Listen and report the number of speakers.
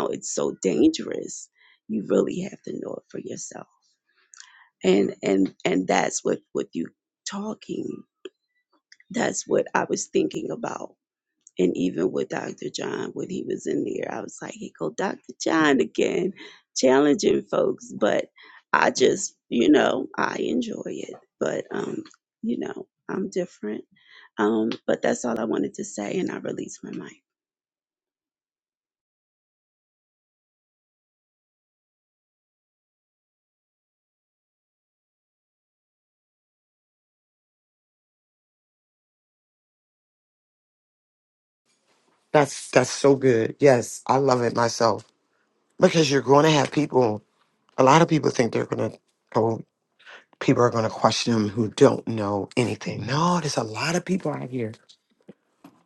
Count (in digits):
2